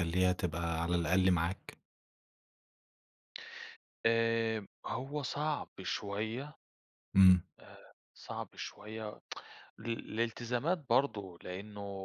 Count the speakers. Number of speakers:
2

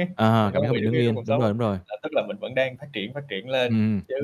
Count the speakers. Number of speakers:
2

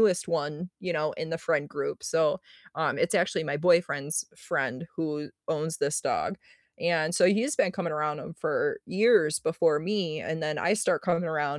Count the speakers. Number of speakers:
1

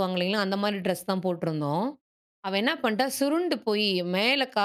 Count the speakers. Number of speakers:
1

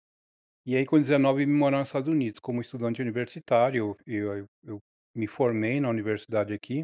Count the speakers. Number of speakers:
1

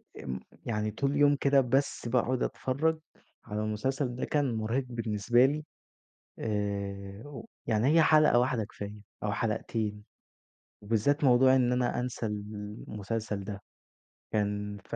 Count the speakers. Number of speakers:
1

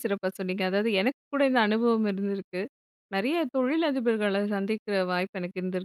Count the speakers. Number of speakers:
1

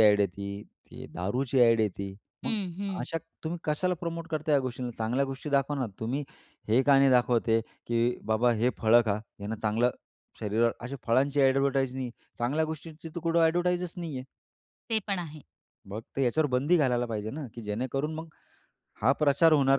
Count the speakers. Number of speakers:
2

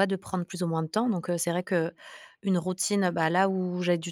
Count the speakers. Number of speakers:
1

